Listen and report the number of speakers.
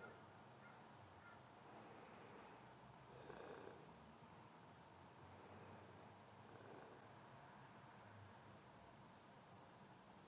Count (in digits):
0